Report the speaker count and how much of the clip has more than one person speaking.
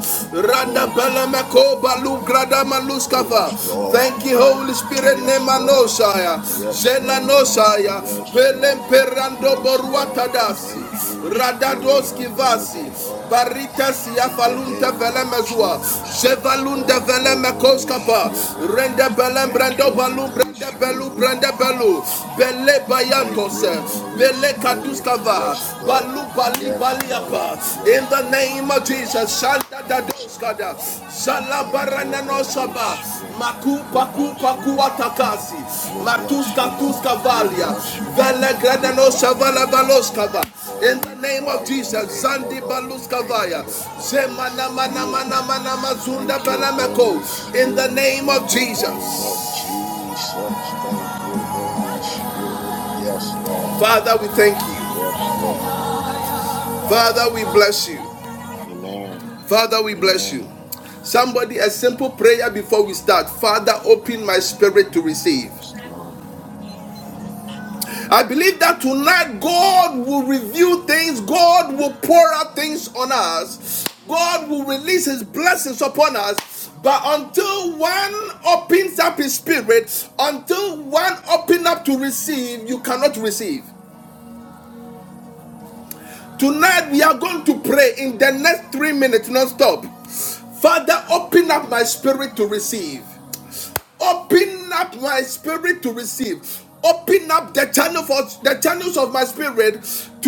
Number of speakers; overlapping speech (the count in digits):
2, about 31%